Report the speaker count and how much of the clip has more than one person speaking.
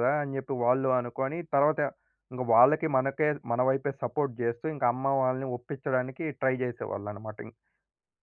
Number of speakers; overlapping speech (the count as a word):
one, no overlap